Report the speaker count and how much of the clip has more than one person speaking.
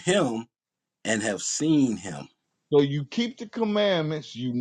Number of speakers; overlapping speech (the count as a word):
two, no overlap